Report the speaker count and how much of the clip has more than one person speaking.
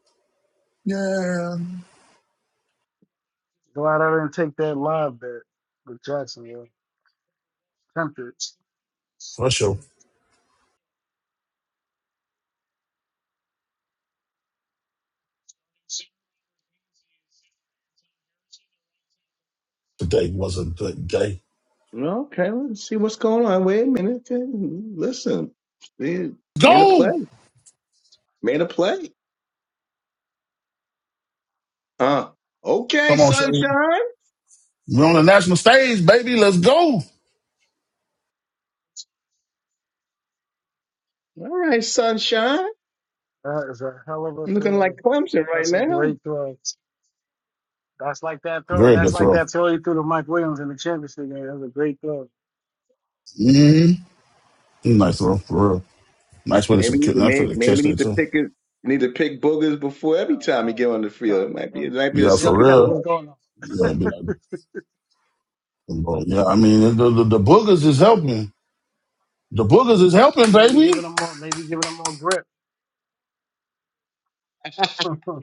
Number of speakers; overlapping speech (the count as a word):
three, about 9%